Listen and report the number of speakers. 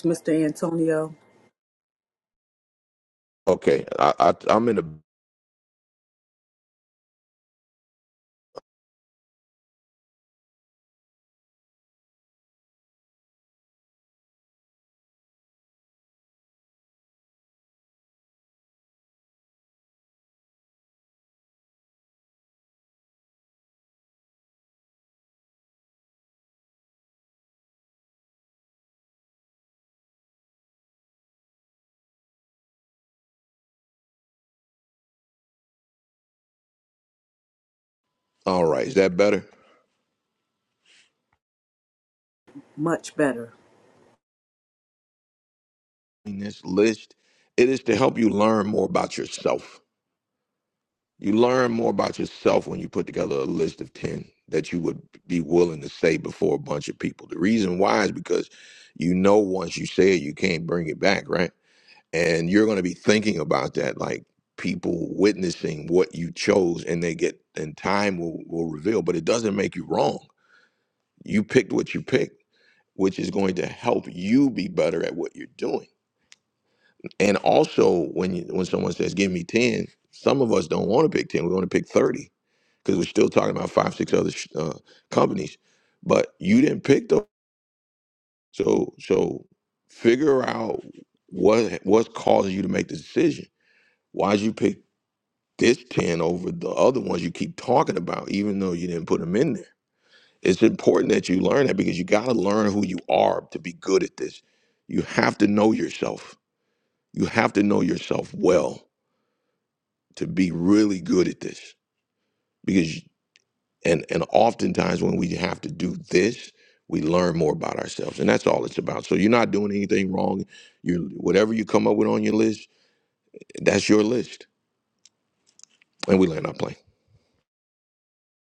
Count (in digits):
2